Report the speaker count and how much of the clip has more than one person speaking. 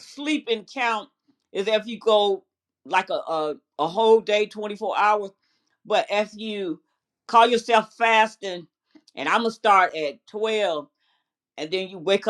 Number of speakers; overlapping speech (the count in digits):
1, no overlap